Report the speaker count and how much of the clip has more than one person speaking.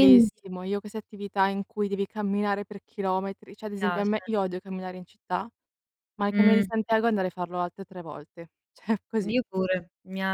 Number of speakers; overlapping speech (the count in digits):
2, about 10%